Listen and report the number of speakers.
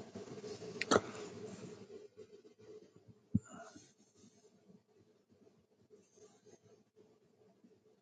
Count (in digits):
0